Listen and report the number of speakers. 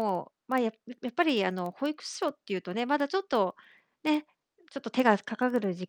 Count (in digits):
1